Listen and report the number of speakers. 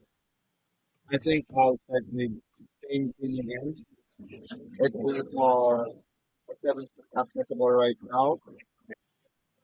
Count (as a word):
one